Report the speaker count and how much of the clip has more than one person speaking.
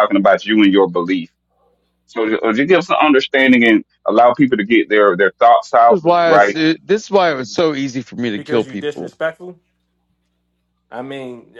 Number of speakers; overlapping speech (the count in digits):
3, about 12%